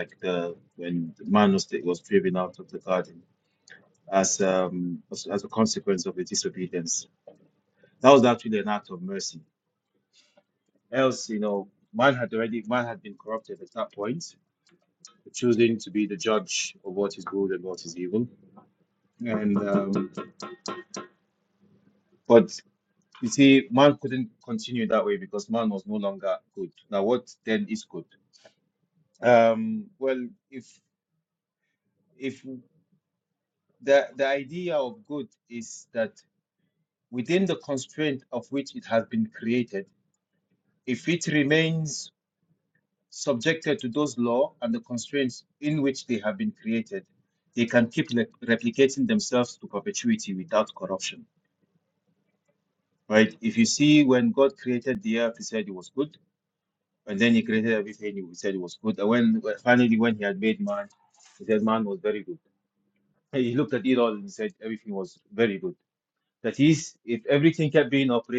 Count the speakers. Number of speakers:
one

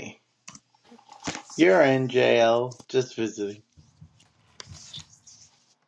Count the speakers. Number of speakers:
one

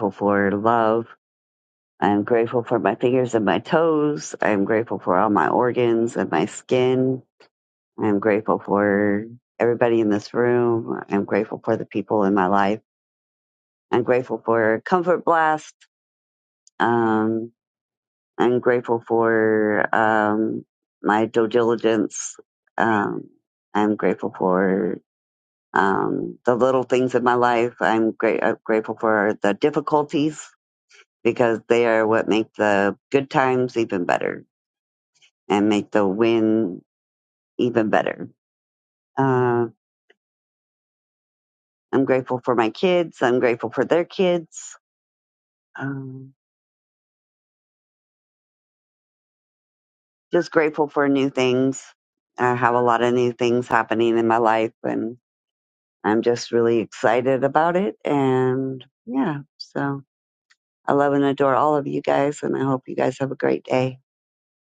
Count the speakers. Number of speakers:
one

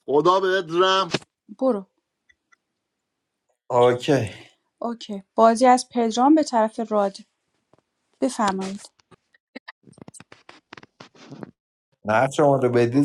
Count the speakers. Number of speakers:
three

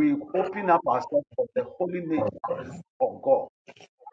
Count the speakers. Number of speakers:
one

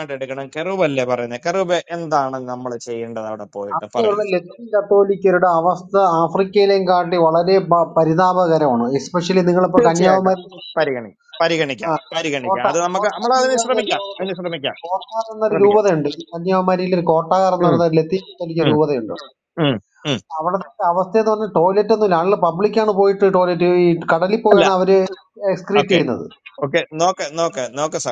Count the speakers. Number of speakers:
two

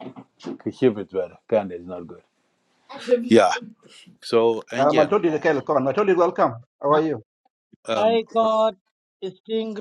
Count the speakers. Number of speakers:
three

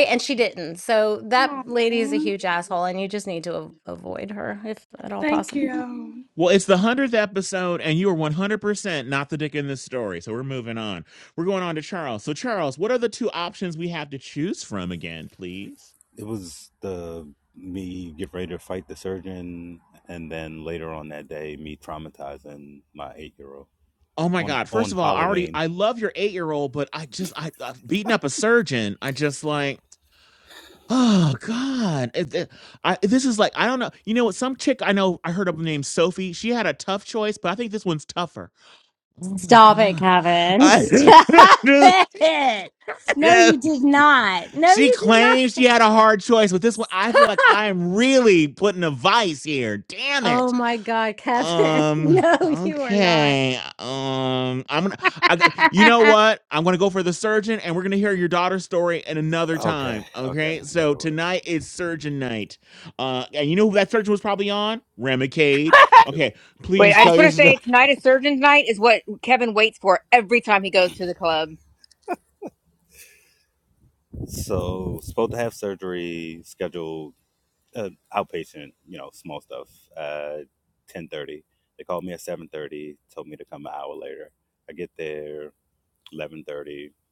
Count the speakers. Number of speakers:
five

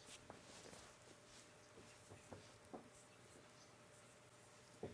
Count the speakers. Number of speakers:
zero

